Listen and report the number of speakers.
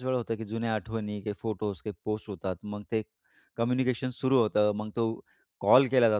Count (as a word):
one